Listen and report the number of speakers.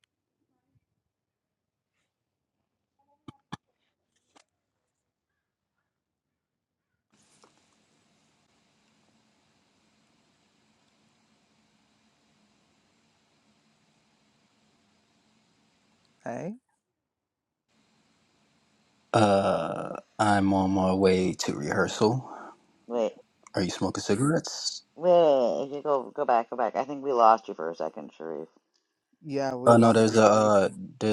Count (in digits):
3